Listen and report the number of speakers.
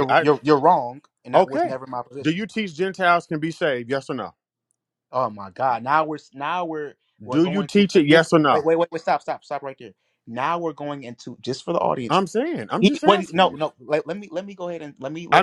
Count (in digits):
2